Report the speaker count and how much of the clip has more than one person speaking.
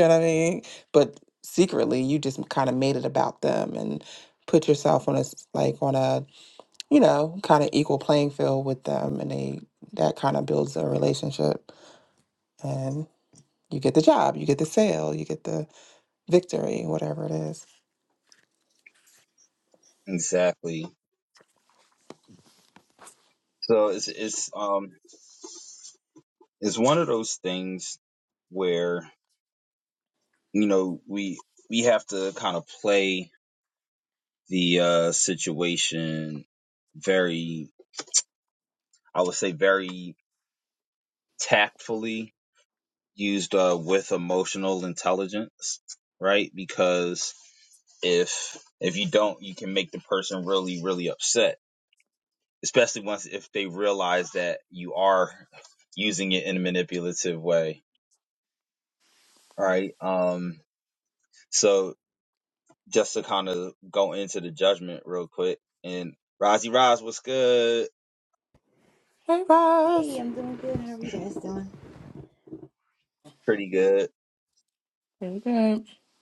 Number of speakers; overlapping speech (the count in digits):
3, under 1%